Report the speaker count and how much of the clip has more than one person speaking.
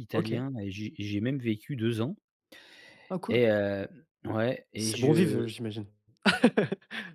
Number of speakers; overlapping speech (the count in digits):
2, about 15%